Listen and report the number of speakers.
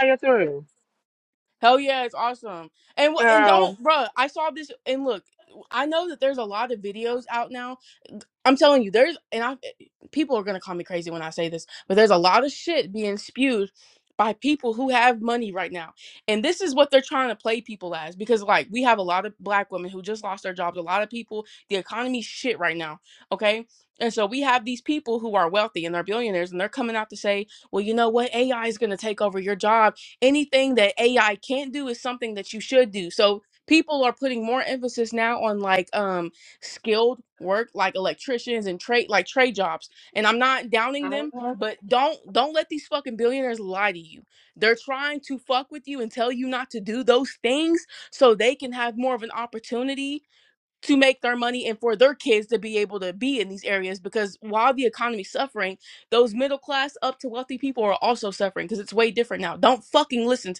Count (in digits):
2